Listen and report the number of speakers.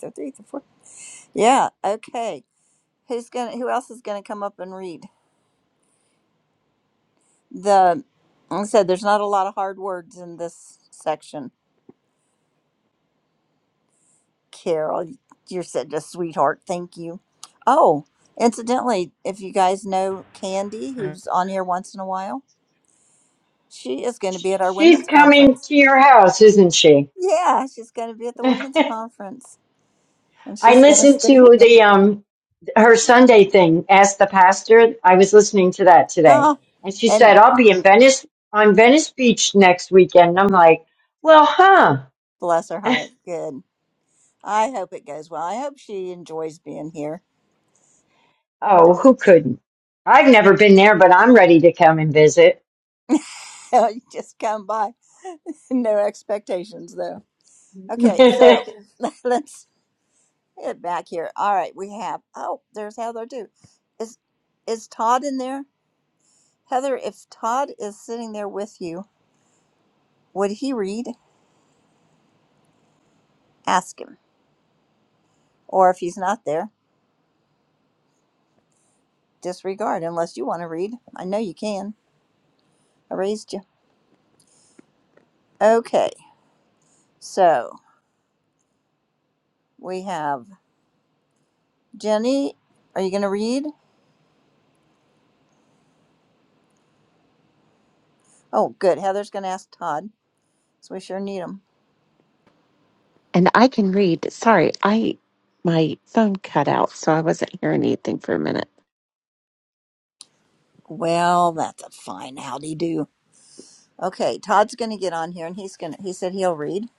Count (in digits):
3